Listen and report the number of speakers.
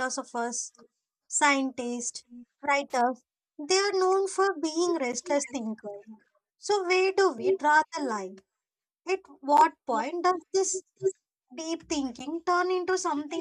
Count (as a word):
one